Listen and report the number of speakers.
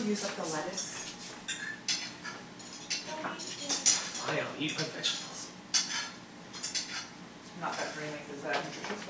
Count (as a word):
two